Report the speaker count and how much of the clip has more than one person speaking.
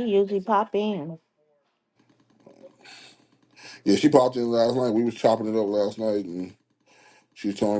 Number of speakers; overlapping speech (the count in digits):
2, no overlap